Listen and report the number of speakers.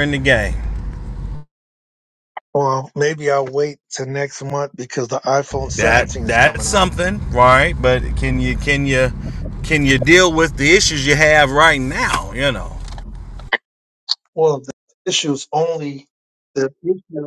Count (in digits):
2